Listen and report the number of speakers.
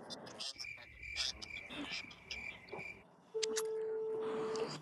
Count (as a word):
zero